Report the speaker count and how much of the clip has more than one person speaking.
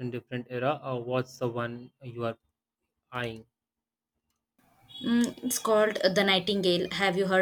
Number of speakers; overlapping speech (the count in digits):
2, no overlap